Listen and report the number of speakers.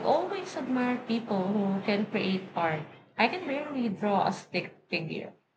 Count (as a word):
one